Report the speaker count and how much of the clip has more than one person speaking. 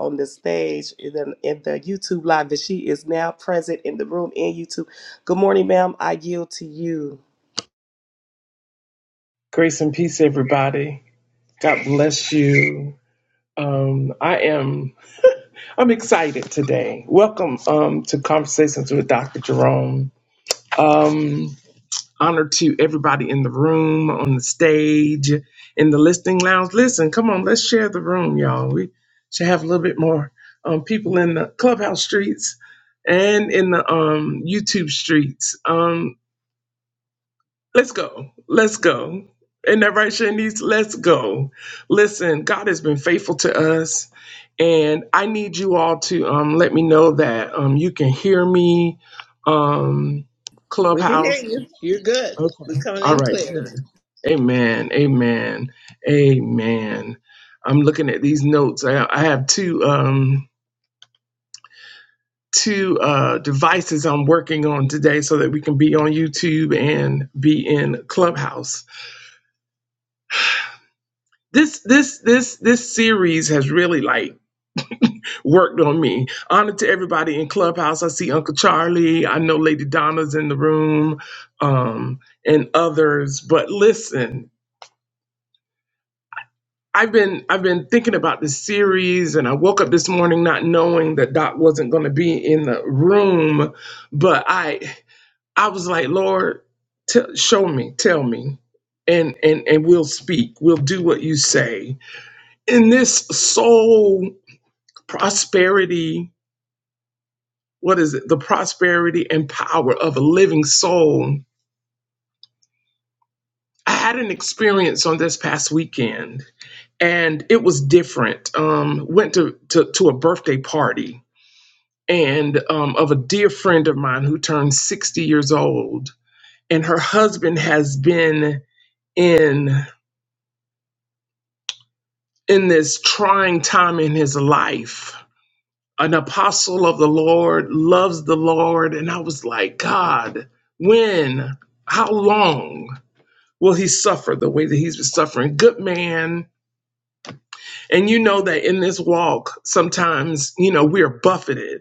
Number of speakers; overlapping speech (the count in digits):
3, about 1%